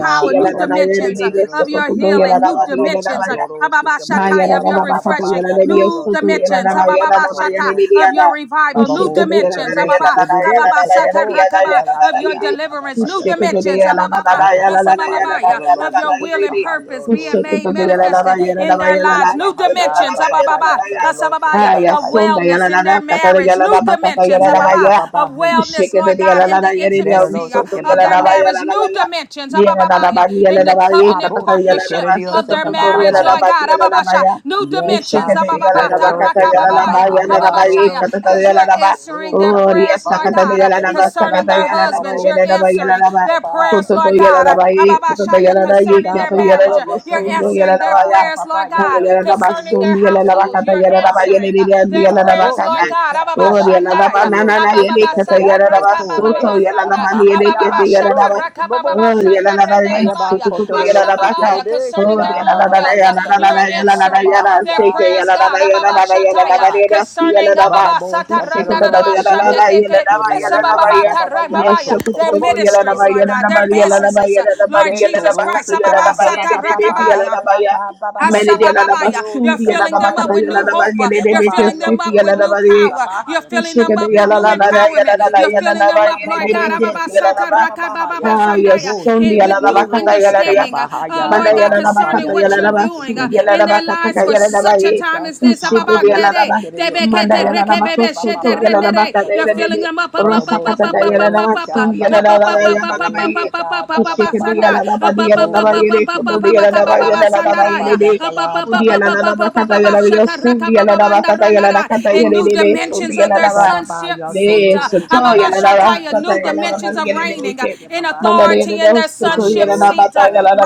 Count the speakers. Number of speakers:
3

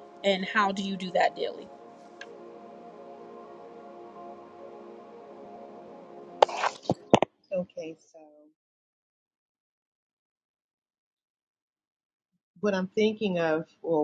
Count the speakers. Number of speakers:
2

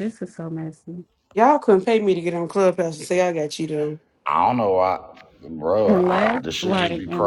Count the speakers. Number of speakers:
3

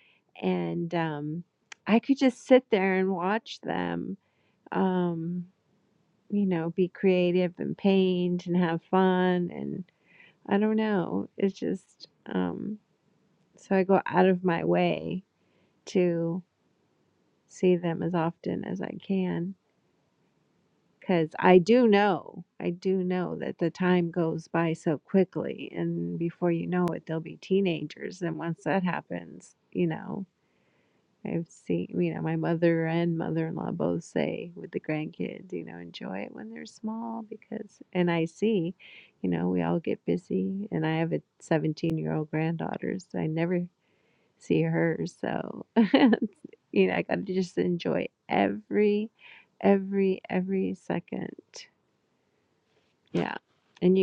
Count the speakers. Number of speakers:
1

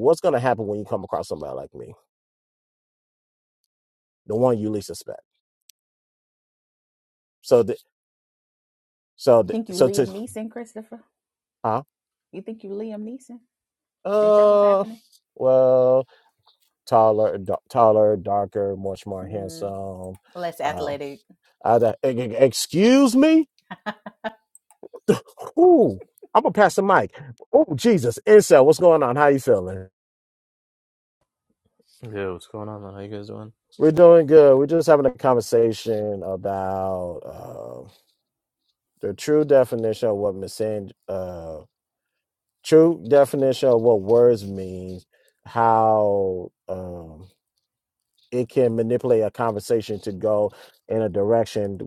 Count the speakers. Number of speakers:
3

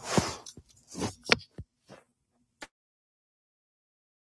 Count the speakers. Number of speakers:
0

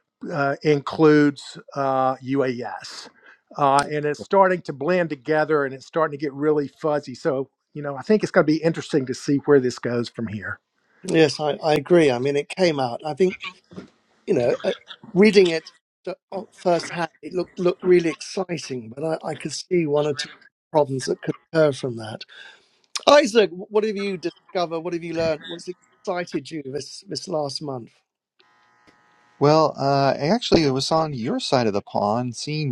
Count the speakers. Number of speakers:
3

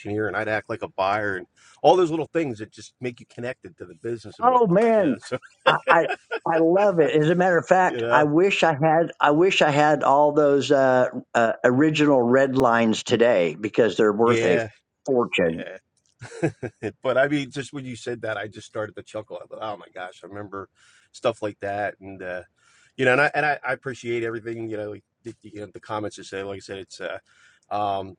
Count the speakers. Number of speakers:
2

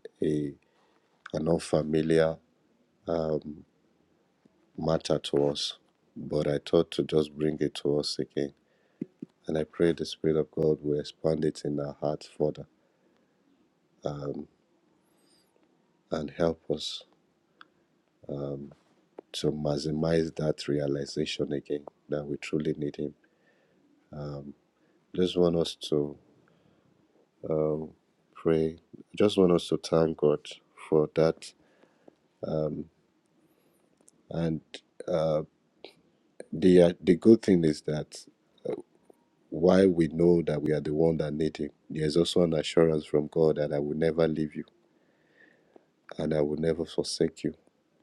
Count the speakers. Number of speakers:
1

